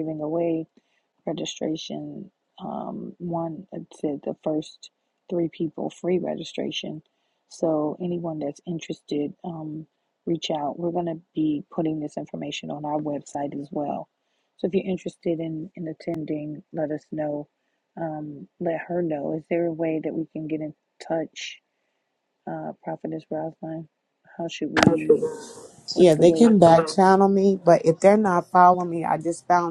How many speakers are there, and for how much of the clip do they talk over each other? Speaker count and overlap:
2, about 2%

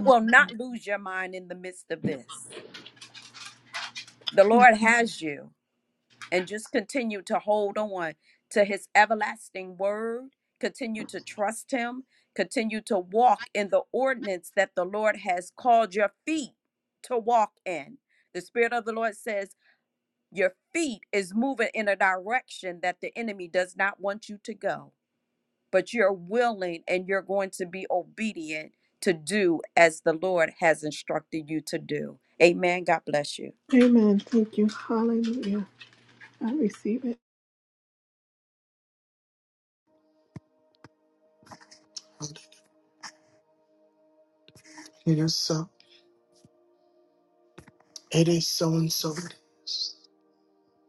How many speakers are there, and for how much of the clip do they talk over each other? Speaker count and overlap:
3, under 1%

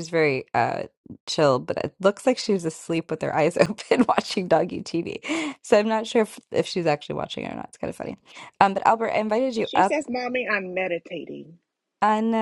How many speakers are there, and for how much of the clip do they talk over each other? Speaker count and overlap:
2, about 2%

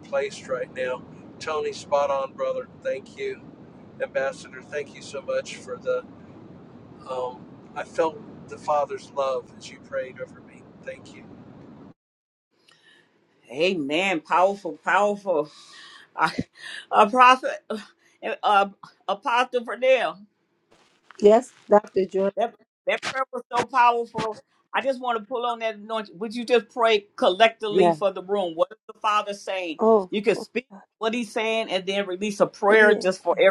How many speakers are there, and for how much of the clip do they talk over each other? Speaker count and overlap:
3, about 2%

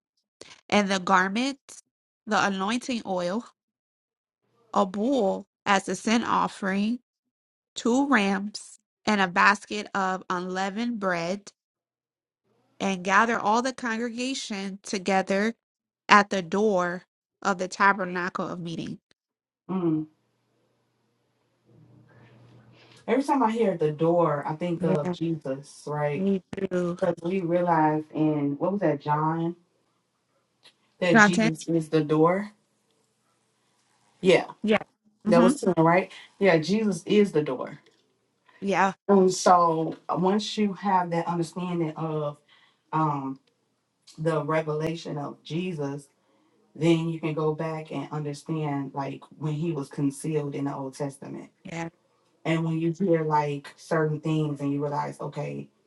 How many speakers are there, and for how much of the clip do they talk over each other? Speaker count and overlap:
2, about 2%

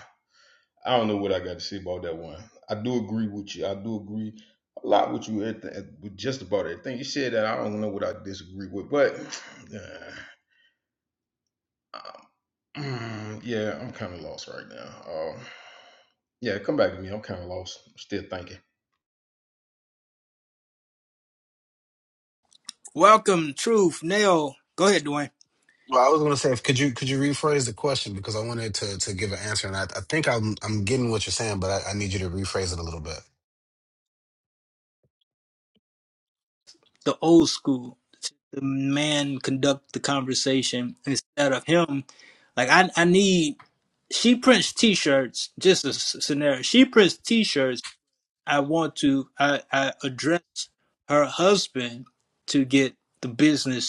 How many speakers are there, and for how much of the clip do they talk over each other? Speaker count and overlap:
3, no overlap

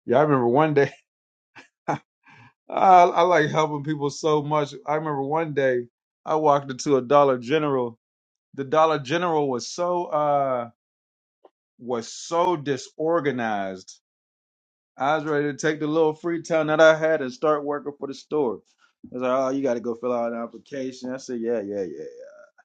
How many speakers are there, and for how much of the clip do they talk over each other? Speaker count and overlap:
1, no overlap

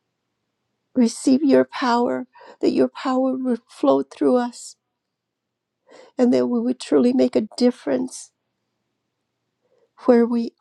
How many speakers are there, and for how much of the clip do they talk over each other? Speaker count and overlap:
1, no overlap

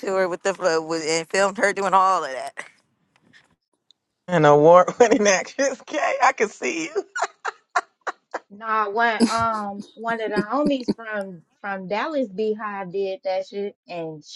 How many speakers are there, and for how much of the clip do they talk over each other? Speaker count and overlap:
3, no overlap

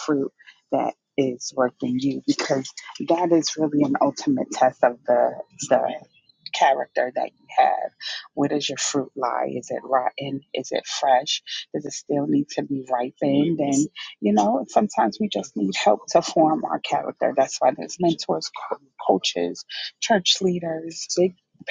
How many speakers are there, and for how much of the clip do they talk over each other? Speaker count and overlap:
1, no overlap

